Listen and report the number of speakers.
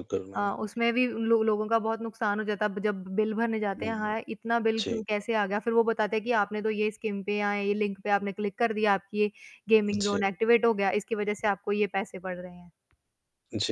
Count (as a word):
two